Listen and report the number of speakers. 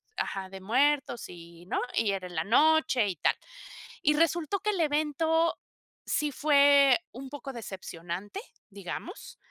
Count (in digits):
1